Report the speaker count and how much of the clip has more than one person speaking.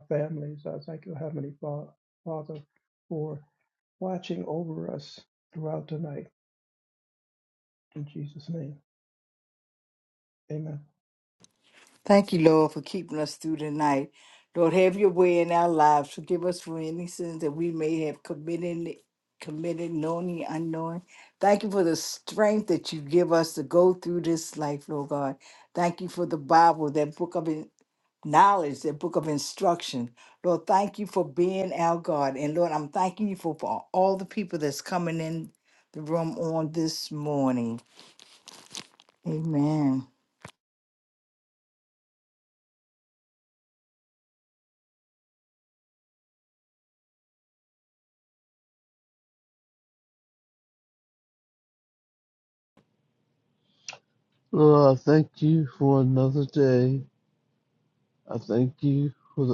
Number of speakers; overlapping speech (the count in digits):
3, no overlap